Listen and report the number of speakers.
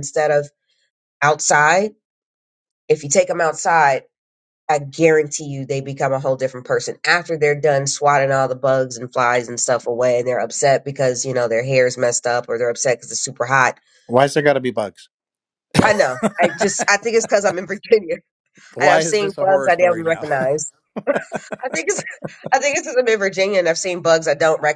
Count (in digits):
2